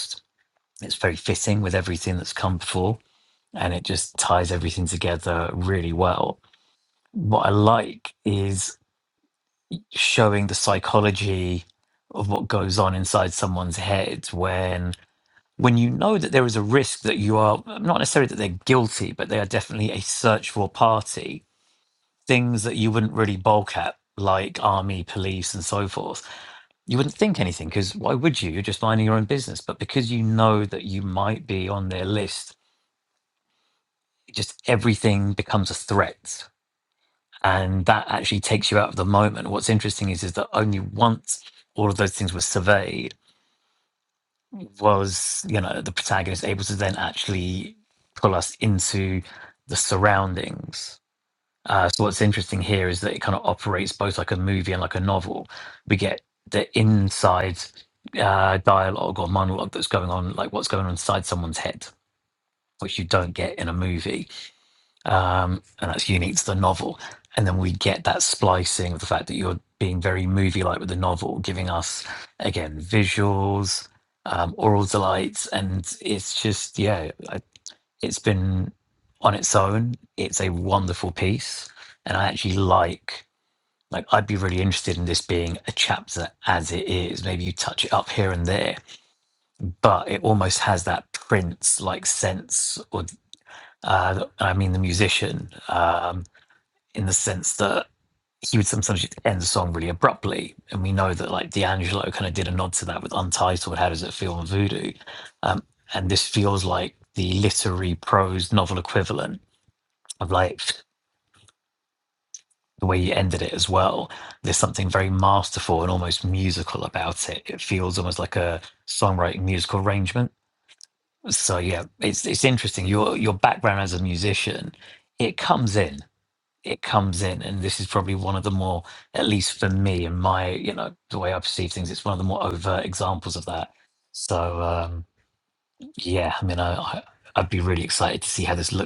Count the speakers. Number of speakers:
1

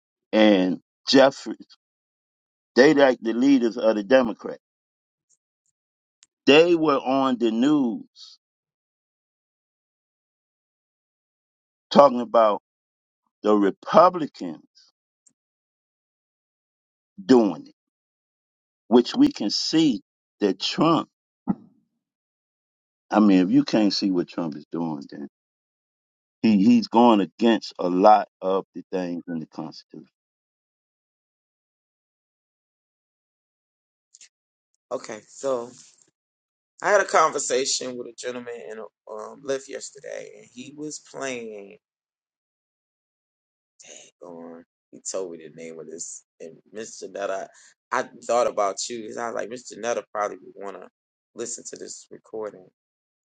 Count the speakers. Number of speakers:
2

